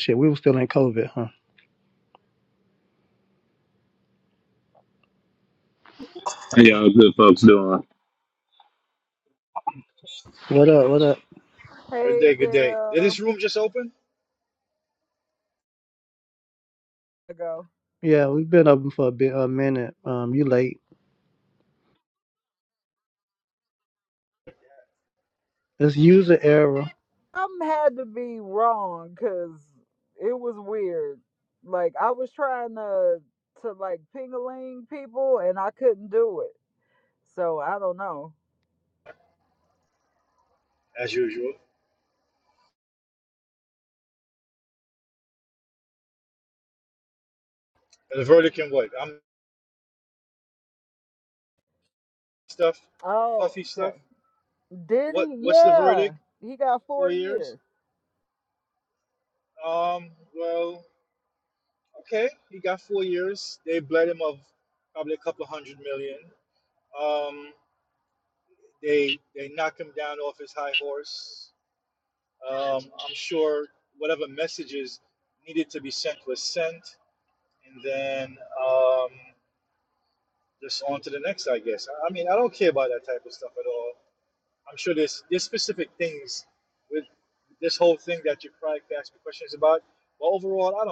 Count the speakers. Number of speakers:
four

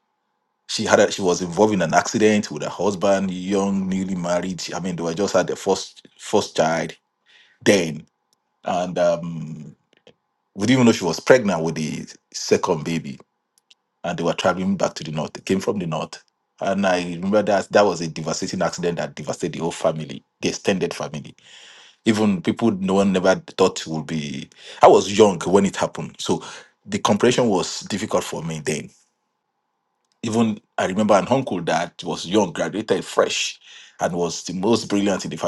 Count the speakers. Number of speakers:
one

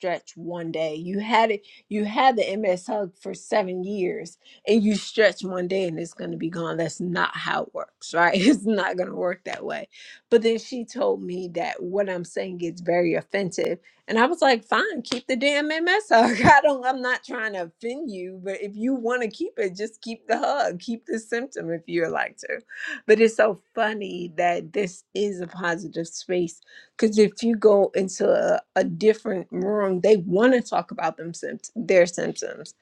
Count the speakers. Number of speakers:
one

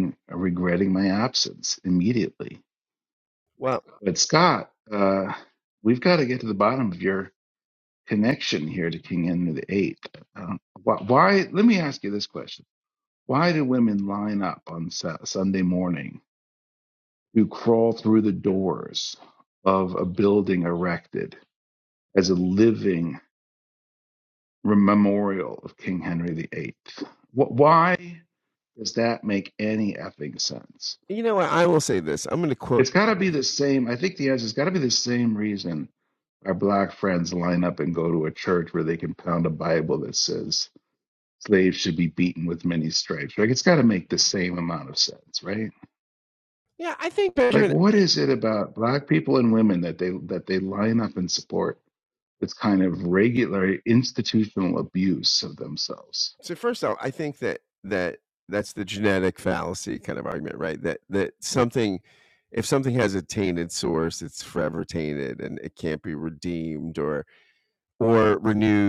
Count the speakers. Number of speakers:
two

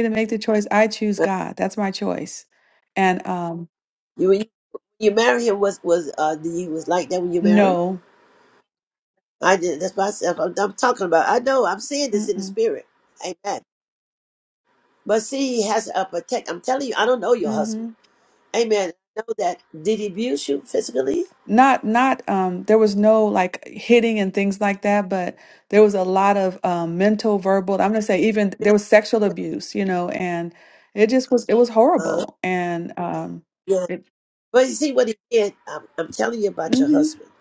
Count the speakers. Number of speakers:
two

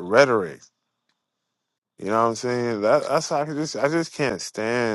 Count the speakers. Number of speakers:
one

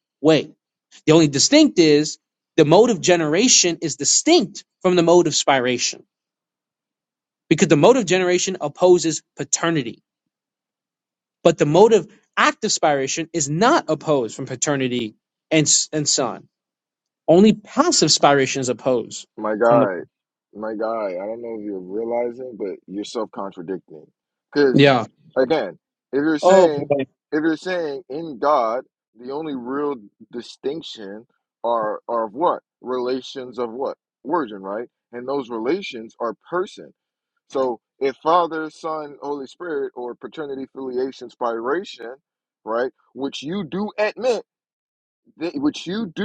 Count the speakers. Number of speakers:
two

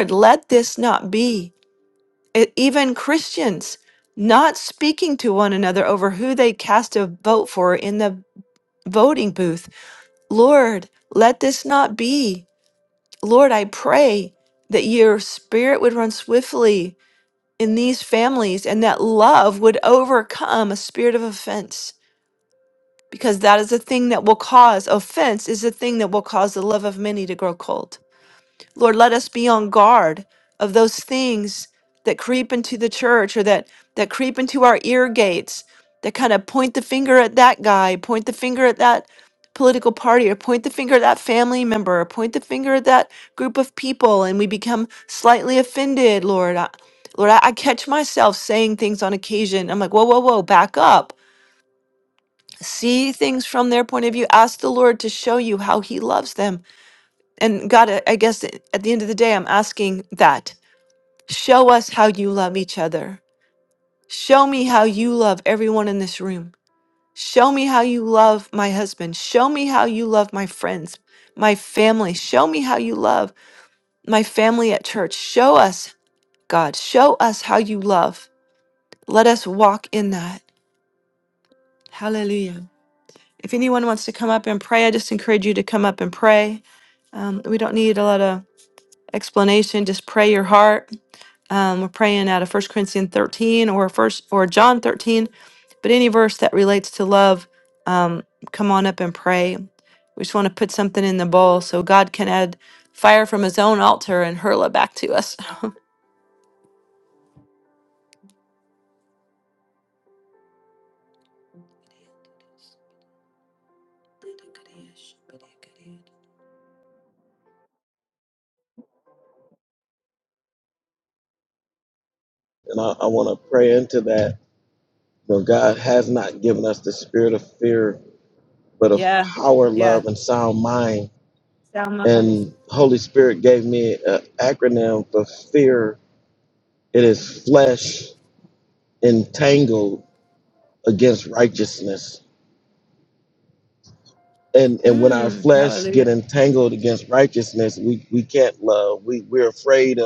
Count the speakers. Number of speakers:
two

